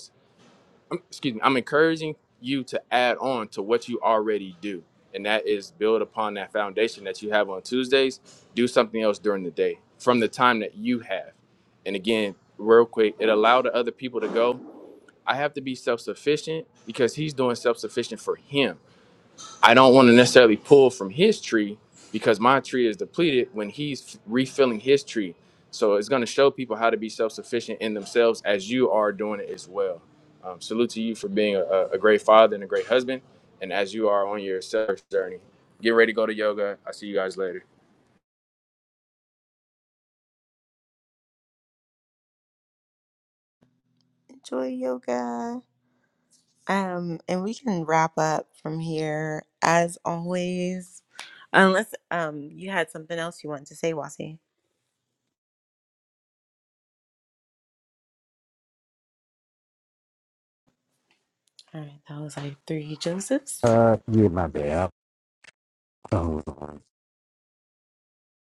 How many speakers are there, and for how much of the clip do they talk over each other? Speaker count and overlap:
3, under 1%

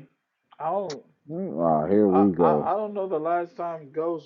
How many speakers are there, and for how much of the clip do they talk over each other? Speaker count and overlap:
2, about 14%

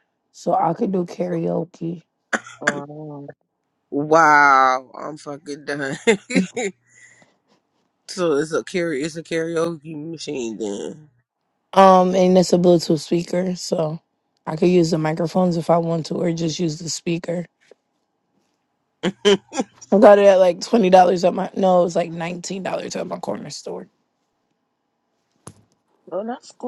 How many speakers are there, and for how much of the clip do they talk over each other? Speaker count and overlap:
3, no overlap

